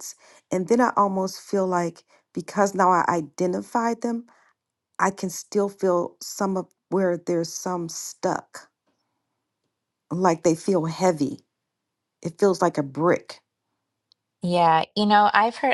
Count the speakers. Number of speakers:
two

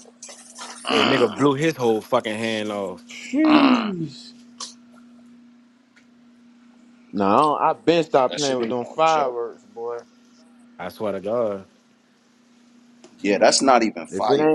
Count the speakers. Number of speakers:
three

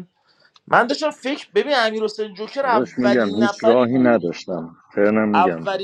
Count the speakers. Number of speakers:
two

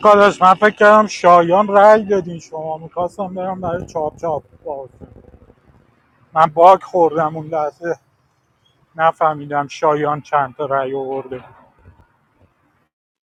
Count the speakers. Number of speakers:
one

